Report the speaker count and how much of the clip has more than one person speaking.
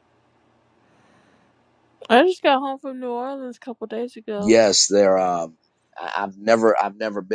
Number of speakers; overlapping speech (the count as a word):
two, about 2%